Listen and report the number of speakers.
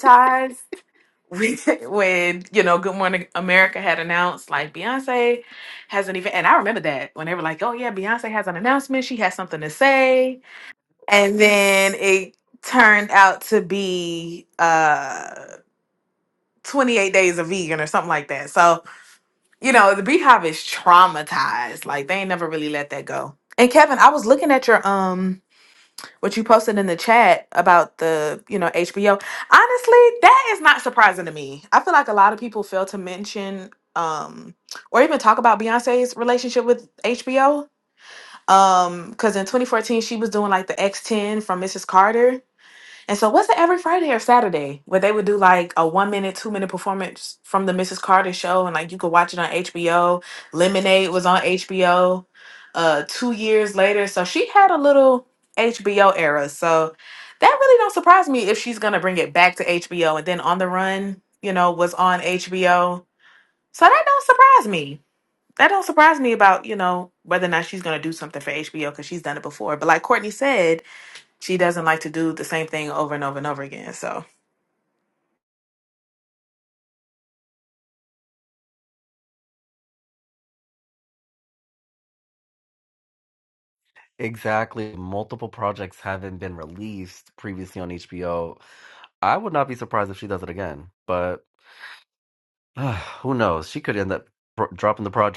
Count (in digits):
2